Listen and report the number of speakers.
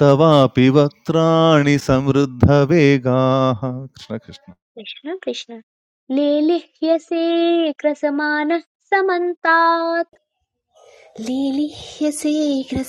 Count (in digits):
3